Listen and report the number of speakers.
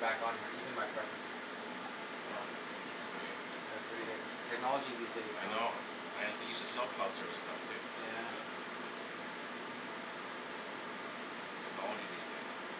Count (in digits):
2